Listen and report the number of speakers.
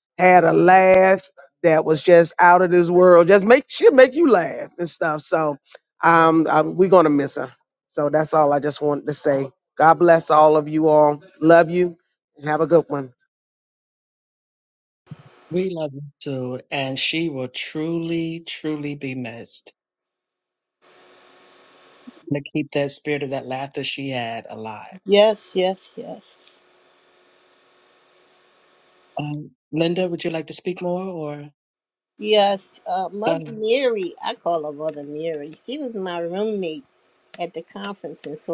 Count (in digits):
3